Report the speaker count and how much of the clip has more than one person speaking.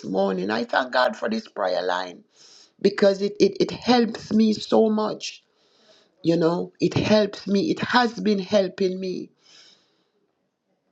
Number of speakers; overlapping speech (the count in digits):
1, no overlap